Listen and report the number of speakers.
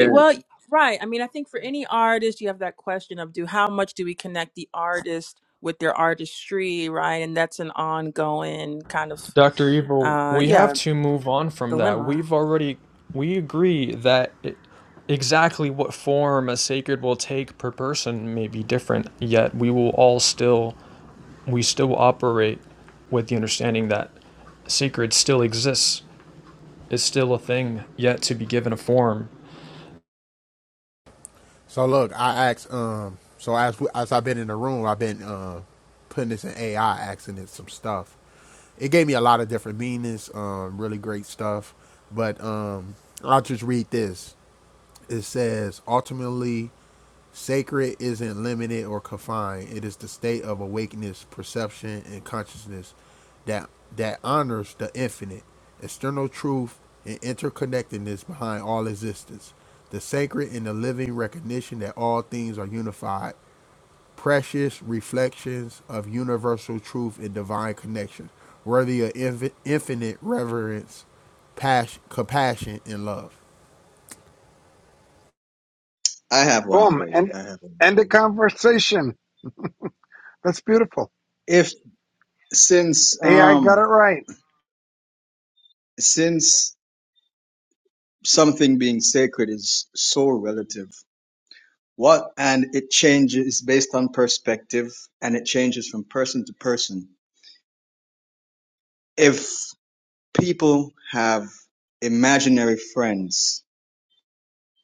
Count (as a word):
five